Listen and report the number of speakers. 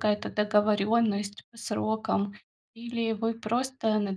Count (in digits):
1